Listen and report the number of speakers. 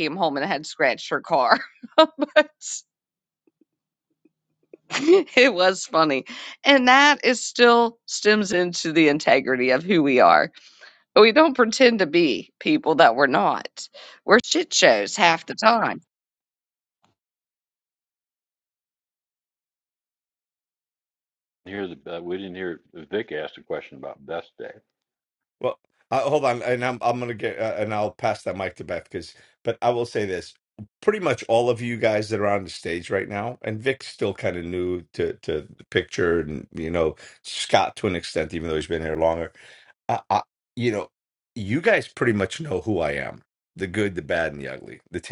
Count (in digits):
3